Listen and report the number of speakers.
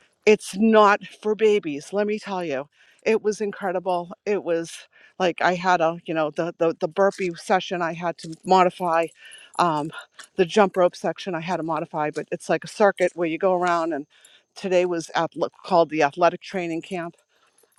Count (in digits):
1